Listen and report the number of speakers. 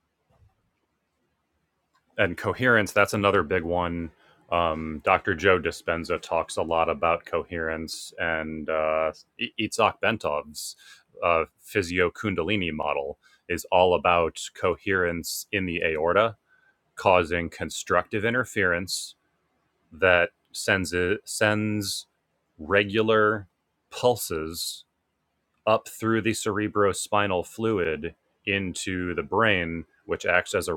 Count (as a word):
one